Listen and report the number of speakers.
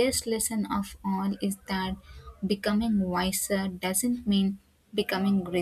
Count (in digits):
1